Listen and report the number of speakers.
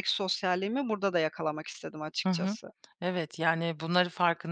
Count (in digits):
2